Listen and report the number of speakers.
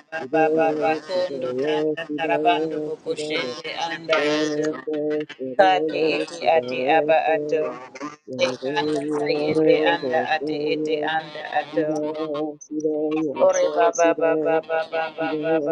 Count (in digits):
2